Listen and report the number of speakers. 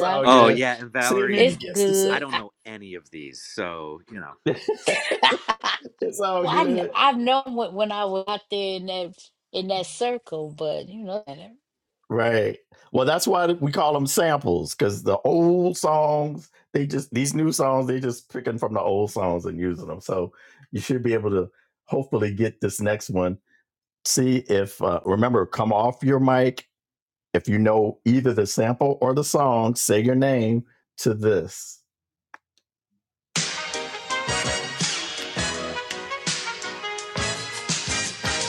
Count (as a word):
three